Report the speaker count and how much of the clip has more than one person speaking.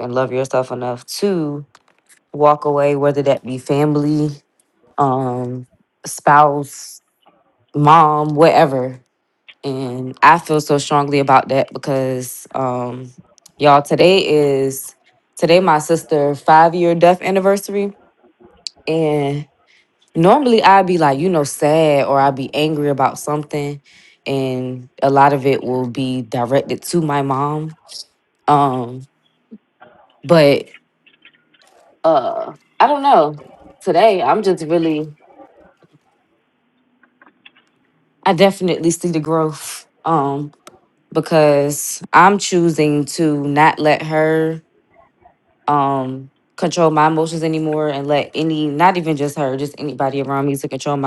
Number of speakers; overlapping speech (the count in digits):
1, no overlap